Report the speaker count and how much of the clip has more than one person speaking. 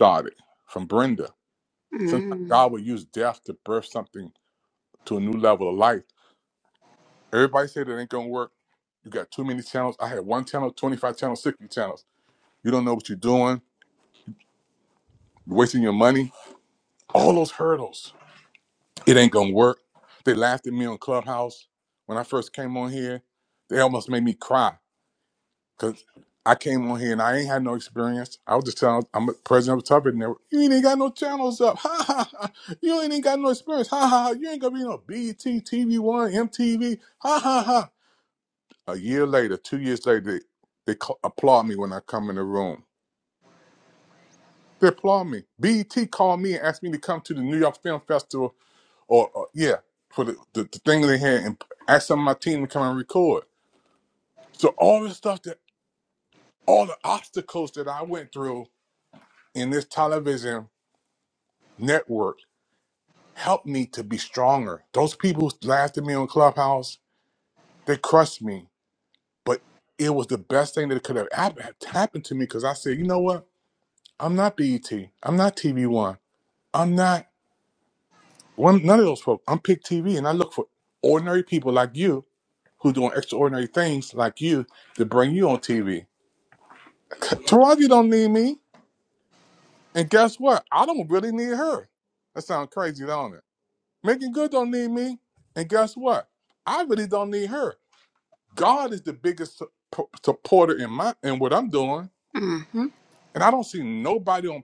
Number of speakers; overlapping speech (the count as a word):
two, under 1%